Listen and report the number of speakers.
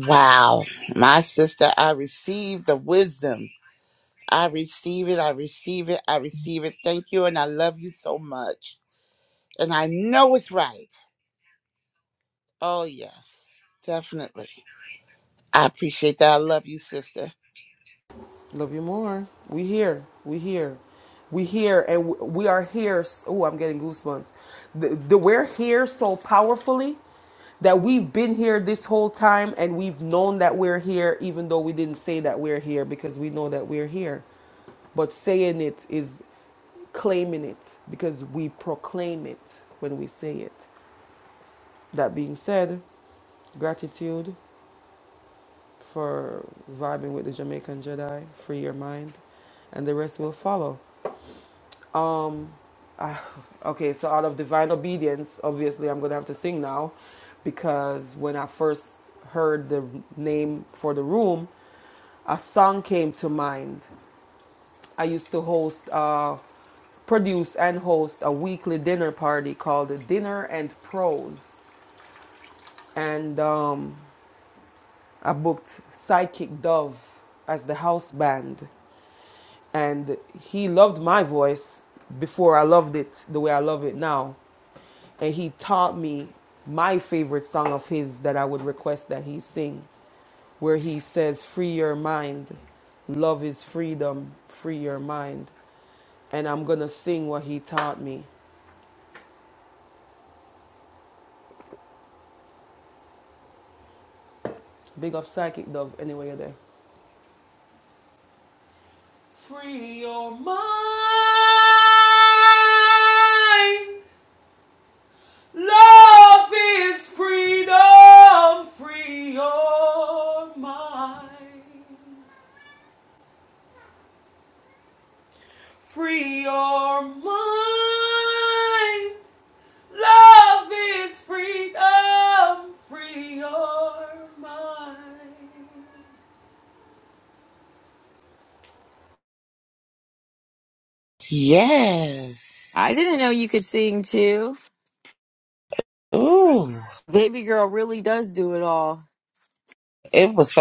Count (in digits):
3